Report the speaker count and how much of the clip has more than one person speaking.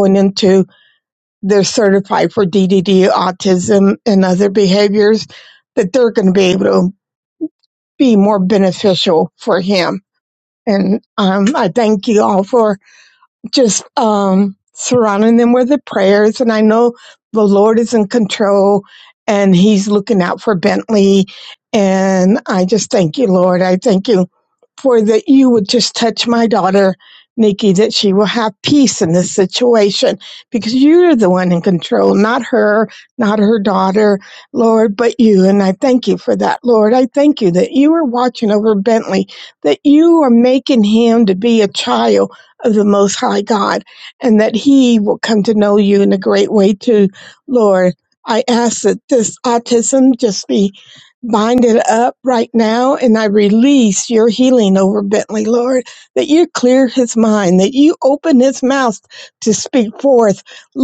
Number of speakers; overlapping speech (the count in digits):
1, no overlap